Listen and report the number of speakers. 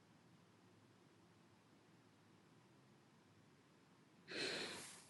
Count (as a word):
zero